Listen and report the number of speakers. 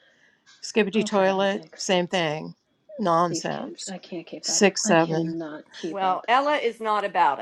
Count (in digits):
3